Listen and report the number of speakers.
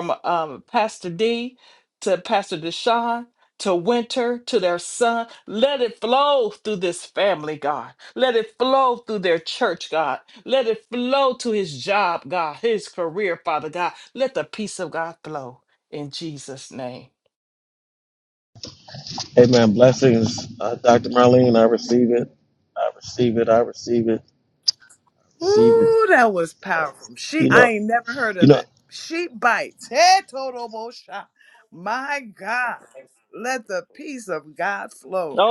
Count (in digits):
3